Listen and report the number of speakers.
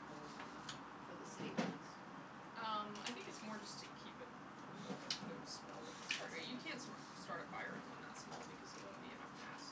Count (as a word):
two